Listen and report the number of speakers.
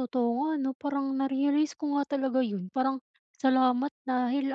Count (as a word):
one